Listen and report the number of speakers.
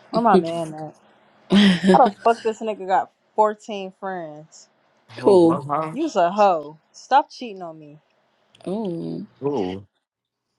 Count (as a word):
three